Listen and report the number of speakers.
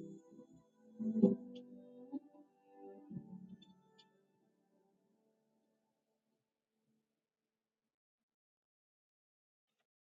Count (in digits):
0